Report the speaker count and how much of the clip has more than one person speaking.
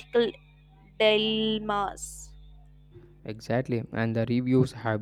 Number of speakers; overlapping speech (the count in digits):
2, no overlap